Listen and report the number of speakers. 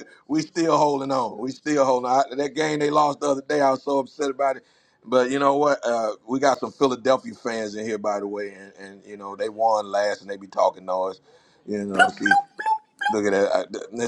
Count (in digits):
1